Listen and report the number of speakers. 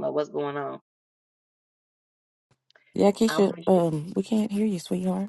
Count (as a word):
two